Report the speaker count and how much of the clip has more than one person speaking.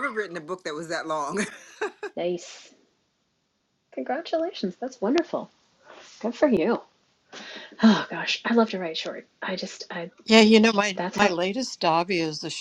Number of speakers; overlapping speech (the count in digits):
3, about 3%